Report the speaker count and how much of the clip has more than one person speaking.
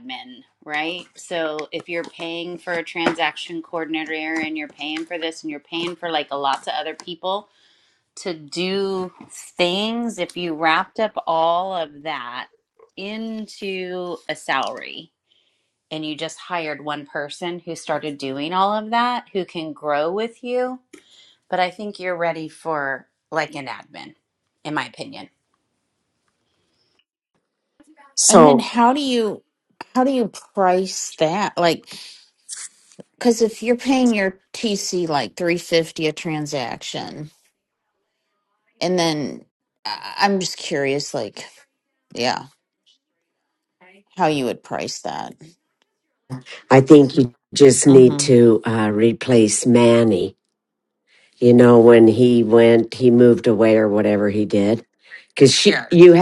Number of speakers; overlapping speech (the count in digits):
3, about 1%